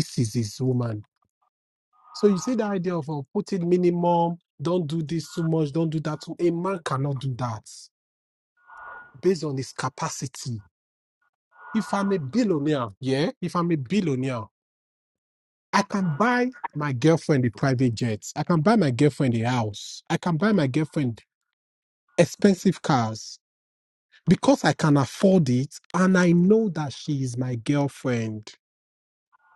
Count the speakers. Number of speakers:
1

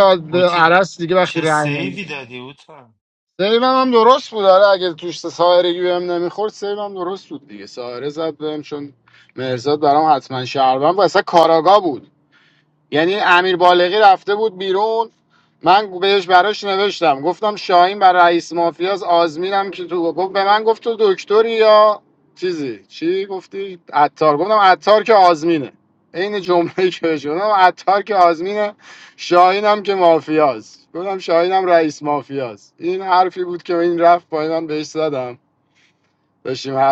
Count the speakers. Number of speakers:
2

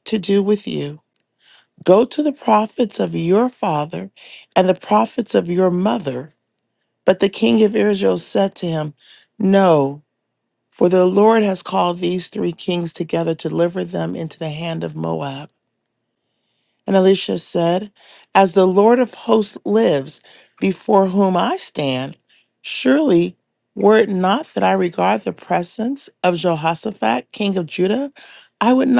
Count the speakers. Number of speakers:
1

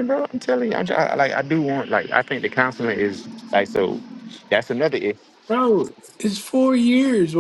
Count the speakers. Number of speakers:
2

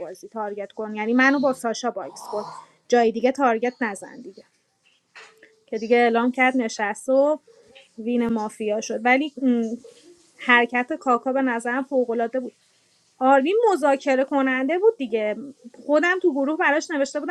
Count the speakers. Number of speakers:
1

